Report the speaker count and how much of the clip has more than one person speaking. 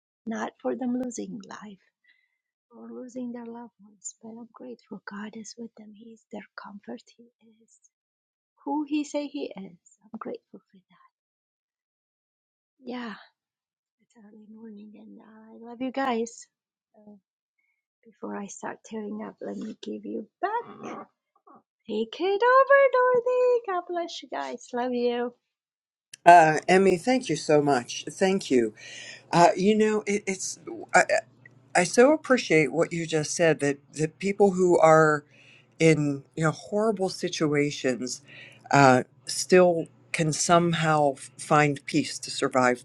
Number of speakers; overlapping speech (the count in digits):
2, no overlap